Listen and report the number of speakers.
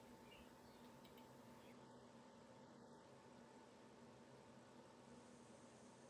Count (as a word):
zero